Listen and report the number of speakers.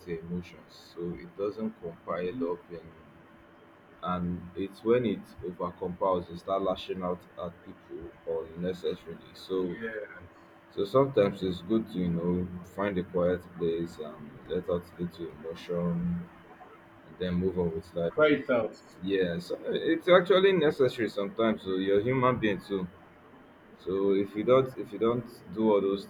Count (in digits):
2